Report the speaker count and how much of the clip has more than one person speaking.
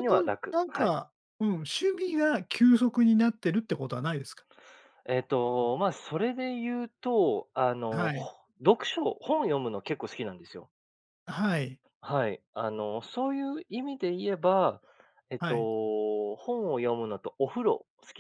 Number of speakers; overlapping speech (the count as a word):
two, about 8%